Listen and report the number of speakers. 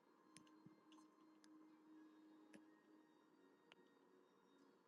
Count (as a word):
zero